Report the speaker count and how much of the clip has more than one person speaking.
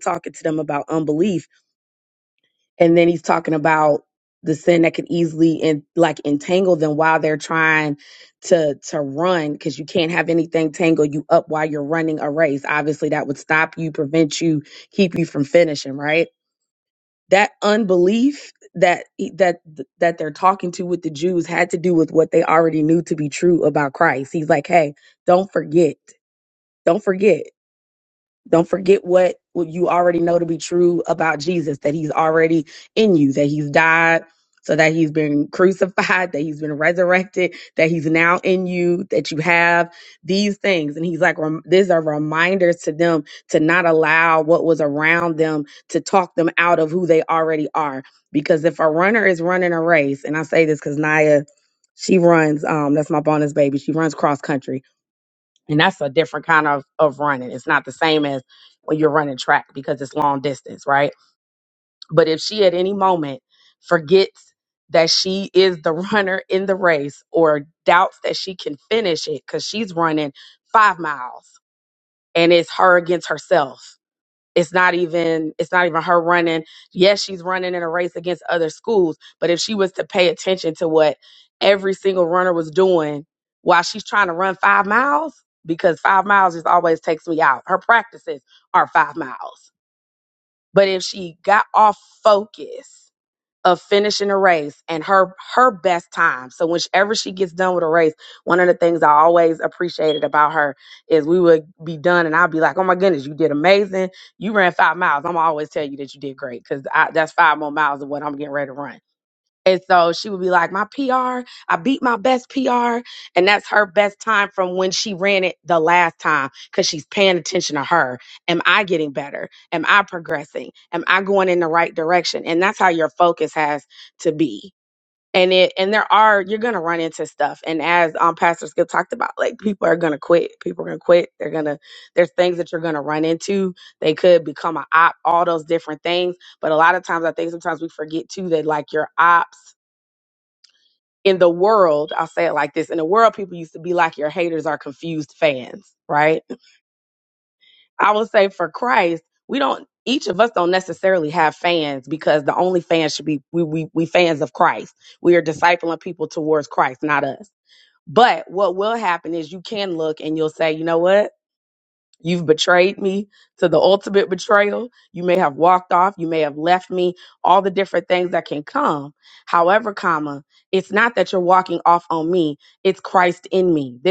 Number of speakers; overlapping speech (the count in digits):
1, no overlap